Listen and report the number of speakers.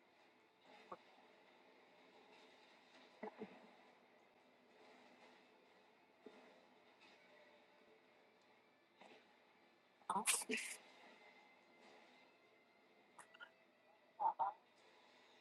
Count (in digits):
0